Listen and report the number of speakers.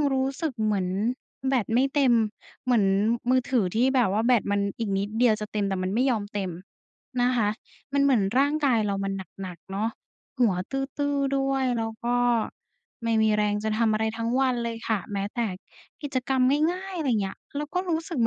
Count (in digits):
1